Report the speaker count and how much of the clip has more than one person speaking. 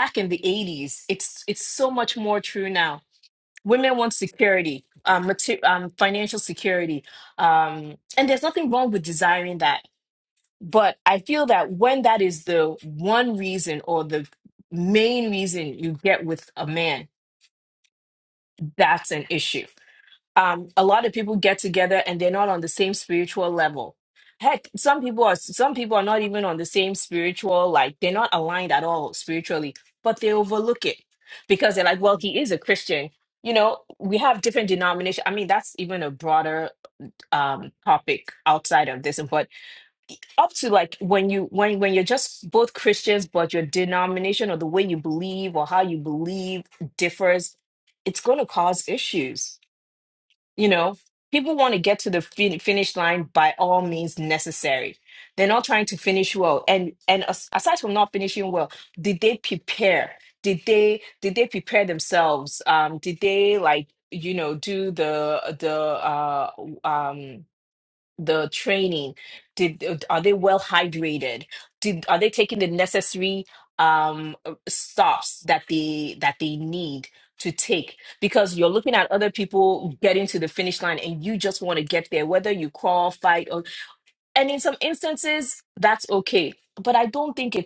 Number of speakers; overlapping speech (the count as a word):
one, no overlap